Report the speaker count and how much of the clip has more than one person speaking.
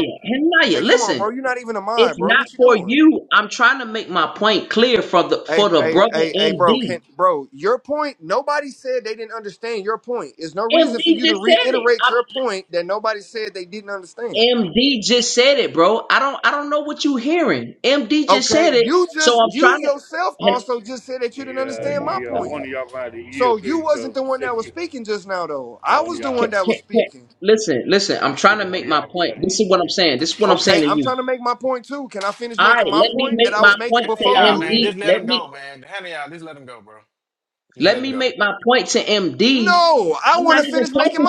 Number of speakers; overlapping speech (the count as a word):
four, about 41%